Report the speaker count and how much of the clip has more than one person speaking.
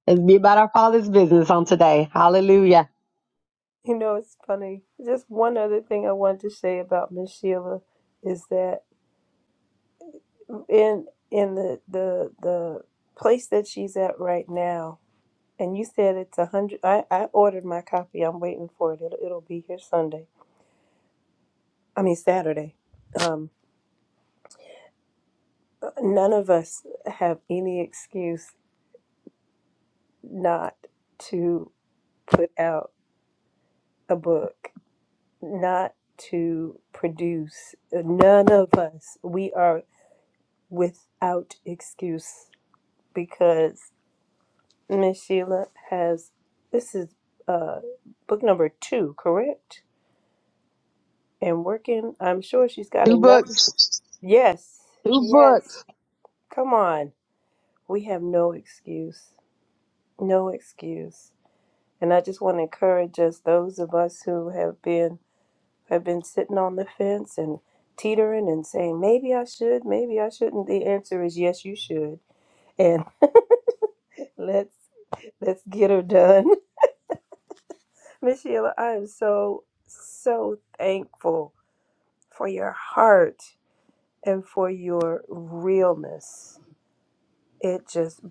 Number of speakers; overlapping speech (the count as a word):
two, about 1%